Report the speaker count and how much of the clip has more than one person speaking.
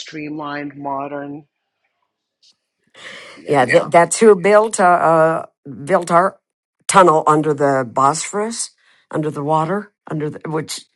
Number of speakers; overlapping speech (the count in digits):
2, about 2%